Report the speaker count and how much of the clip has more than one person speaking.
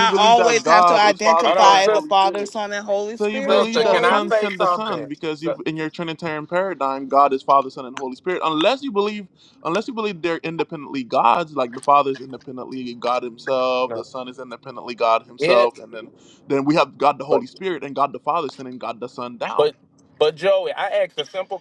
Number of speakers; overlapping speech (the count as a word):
three, about 24%